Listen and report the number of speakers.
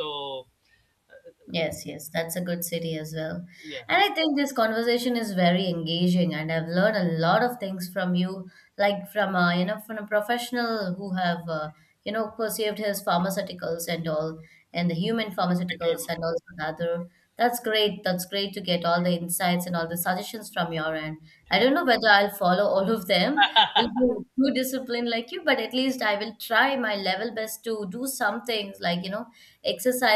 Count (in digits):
2